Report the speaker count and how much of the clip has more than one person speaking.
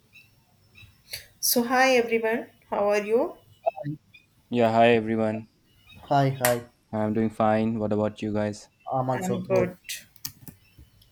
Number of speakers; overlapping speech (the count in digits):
3, about 5%